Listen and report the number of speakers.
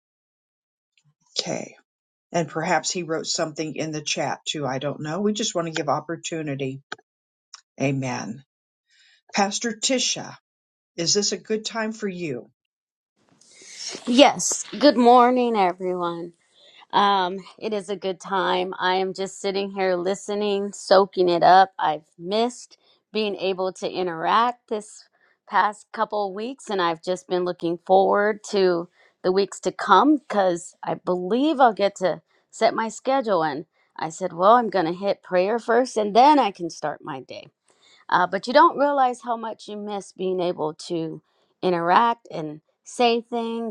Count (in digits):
2